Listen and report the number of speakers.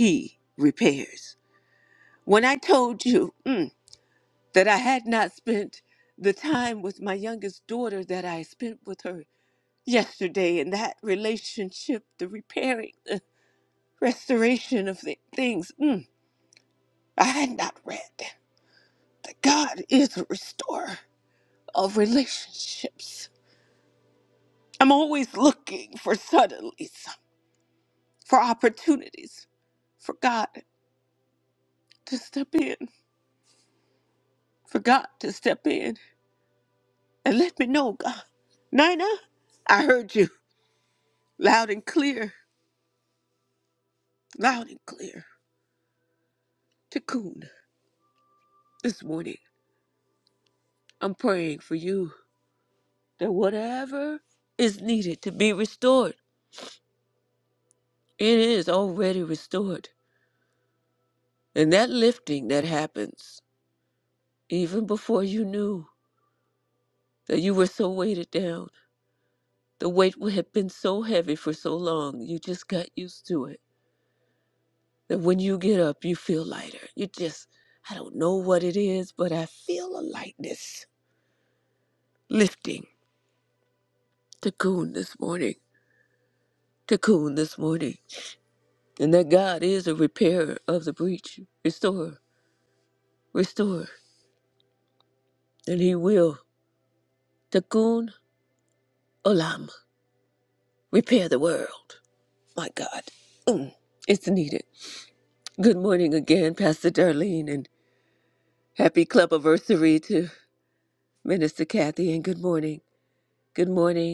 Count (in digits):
1